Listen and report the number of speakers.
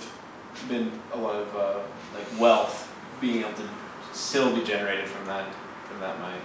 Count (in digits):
1